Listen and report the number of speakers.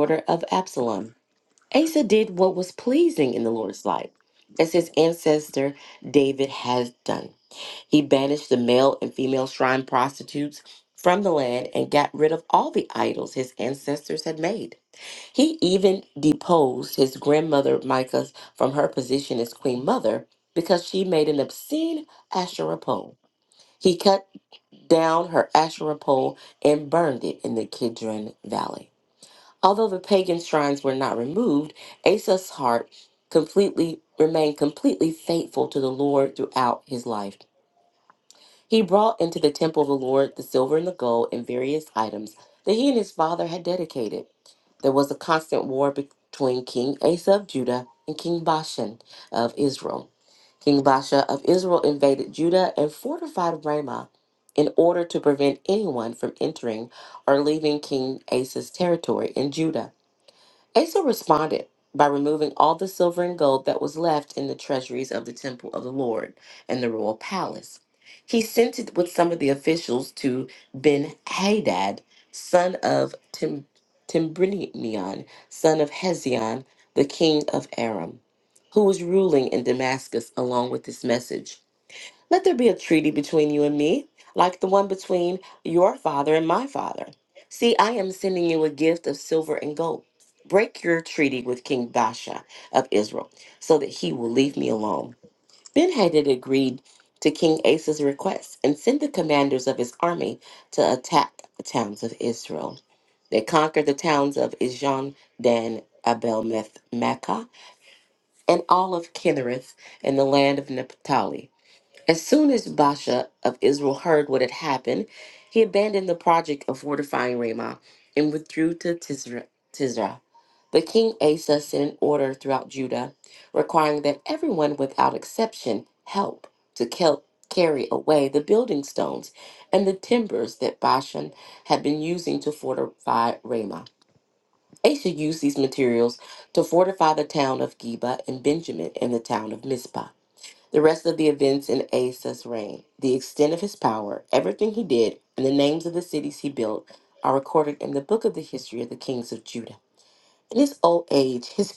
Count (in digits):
1